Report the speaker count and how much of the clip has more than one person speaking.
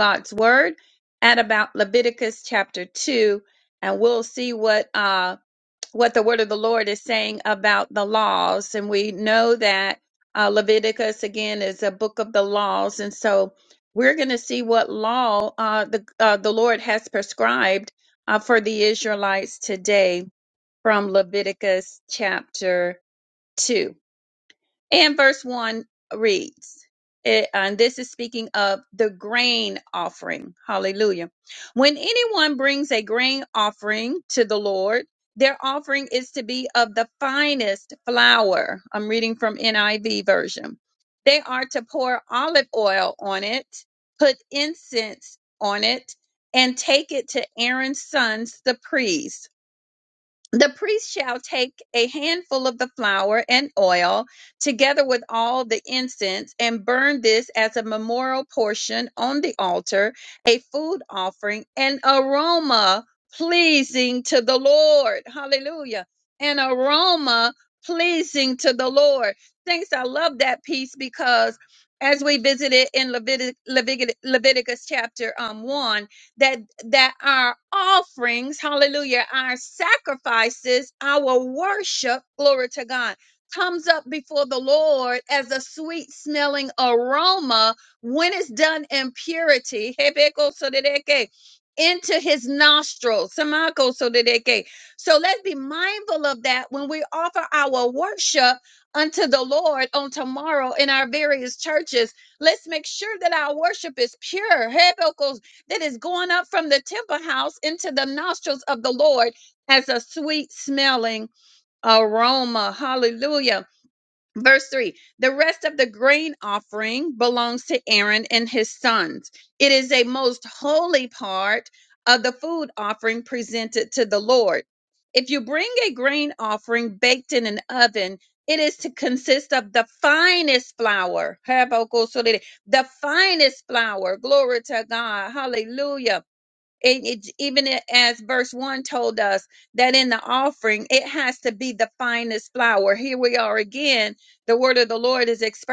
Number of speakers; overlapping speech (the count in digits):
1, no overlap